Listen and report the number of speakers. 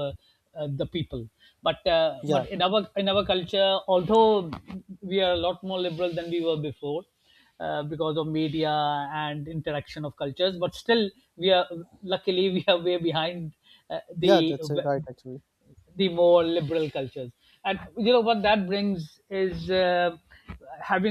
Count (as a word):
two